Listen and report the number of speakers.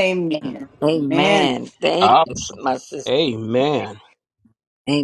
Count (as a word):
three